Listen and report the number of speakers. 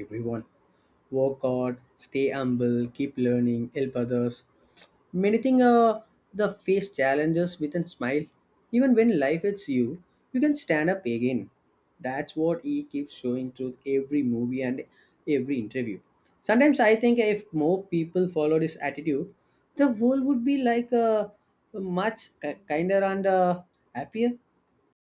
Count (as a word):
one